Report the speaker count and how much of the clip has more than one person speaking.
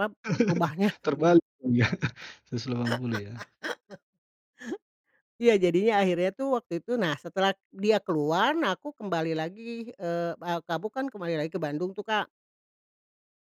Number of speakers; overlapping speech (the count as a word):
two, no overlap